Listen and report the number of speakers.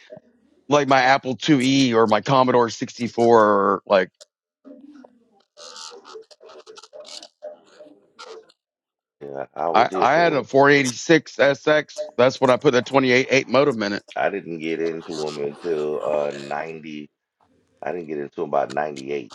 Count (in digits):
2